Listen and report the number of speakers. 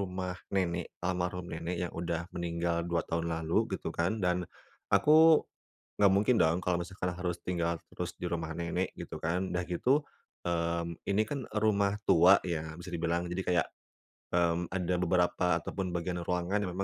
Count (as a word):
one